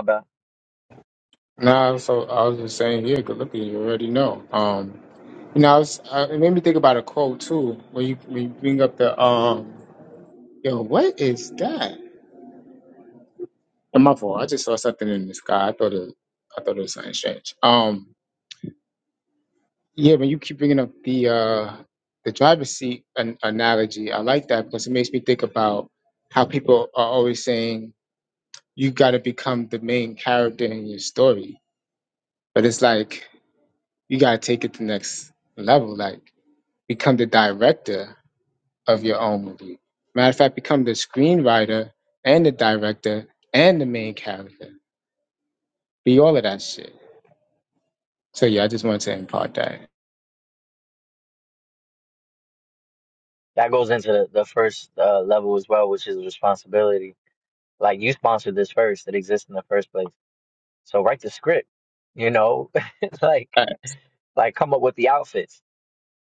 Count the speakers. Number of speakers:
2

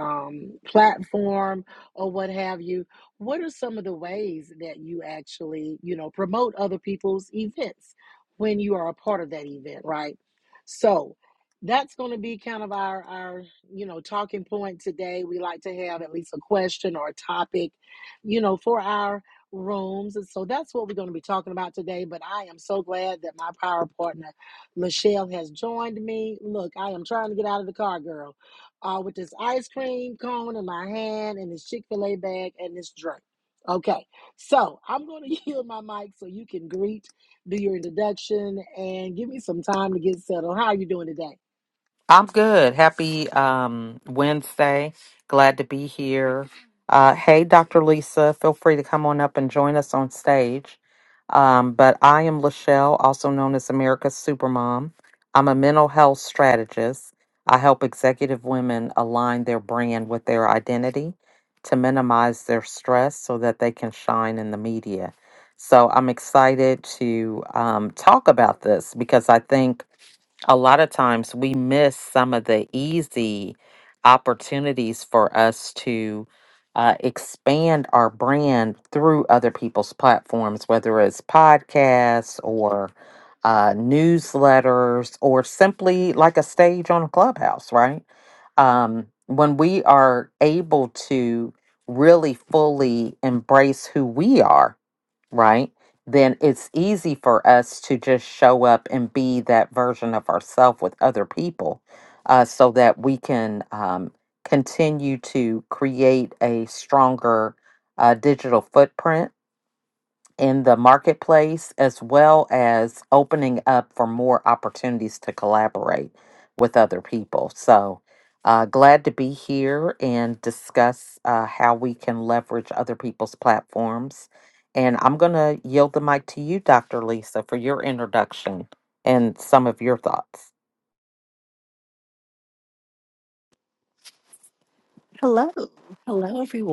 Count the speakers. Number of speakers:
3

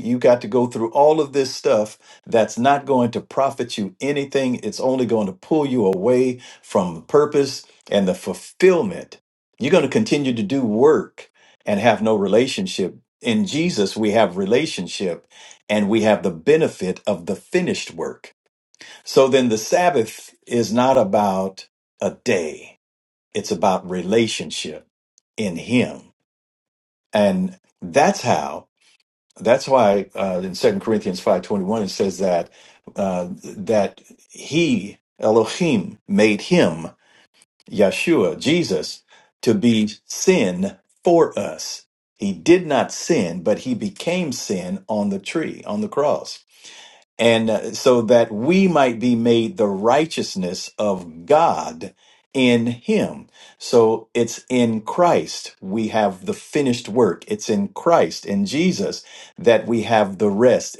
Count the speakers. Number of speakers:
1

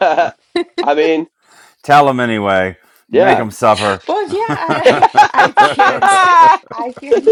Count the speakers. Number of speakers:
3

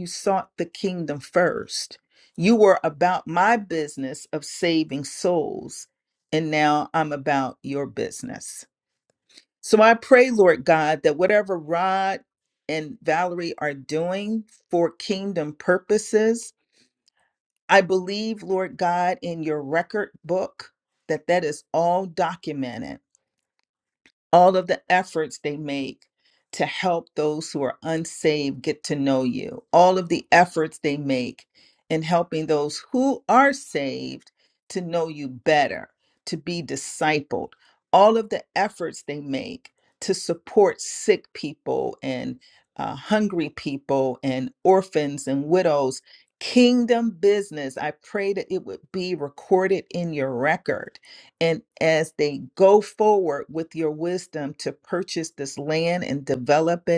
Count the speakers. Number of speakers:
1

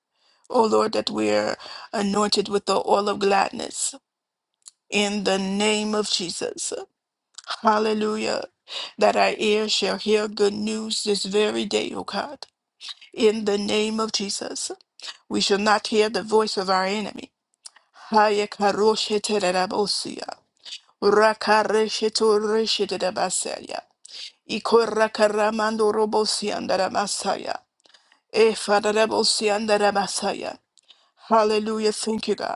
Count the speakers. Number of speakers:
1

